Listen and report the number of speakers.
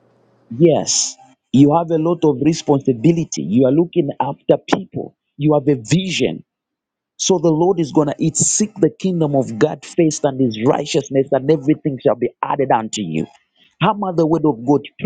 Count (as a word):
one